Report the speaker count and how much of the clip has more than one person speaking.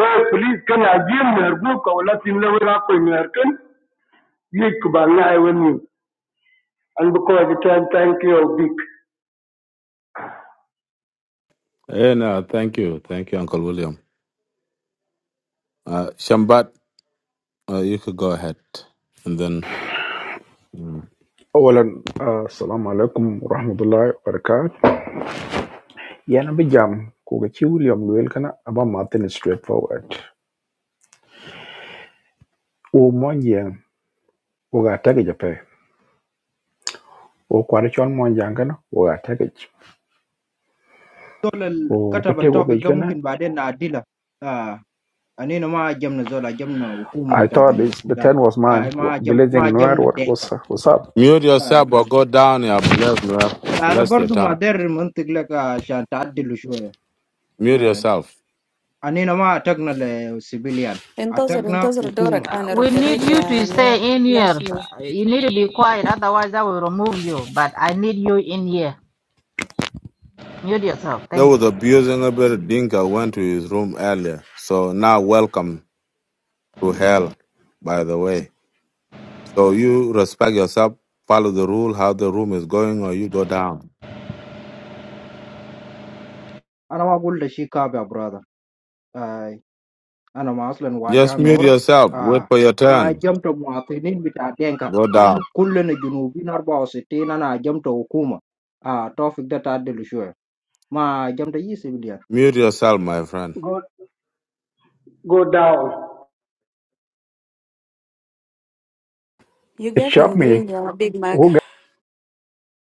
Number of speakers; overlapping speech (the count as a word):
six, about 10%